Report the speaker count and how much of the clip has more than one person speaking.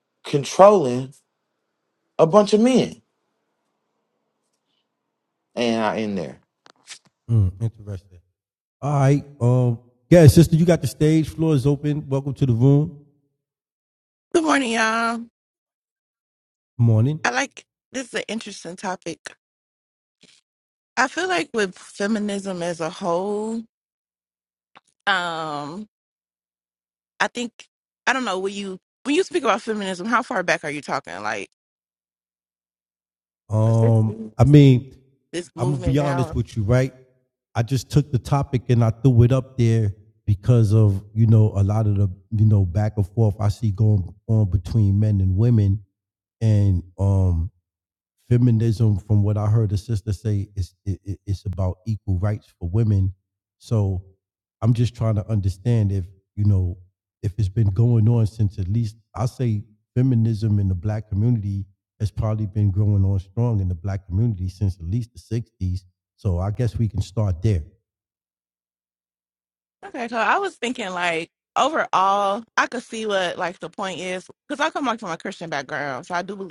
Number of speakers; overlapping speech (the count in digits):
3, about 2%